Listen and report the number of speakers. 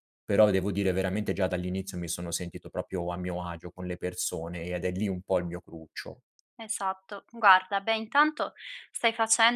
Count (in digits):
2